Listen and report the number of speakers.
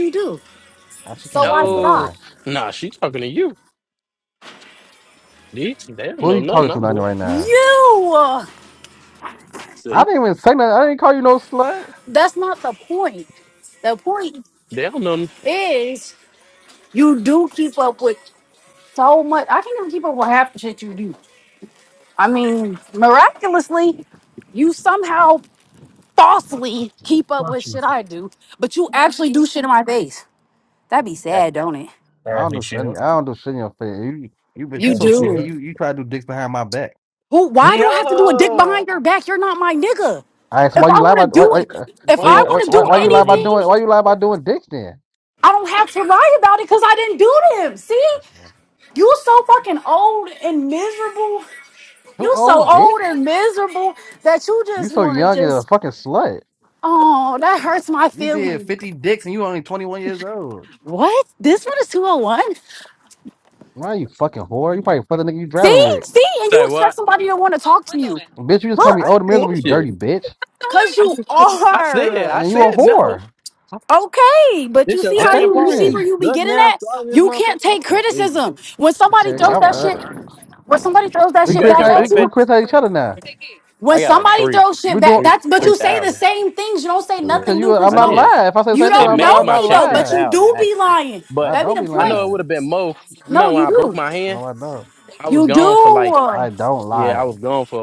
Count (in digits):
3